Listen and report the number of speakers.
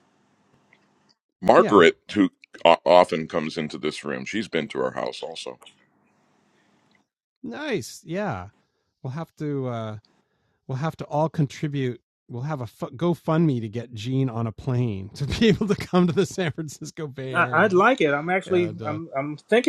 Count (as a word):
three